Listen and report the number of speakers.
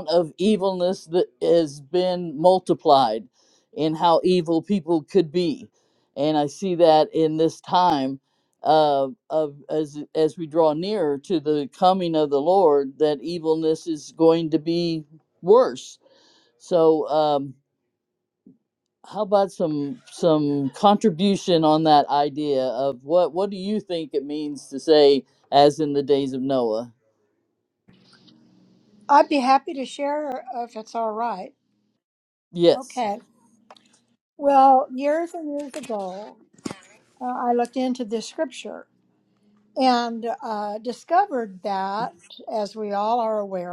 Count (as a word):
two